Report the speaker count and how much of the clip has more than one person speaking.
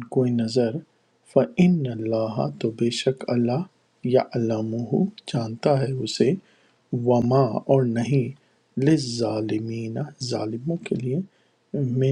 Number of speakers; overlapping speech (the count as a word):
one, no overlap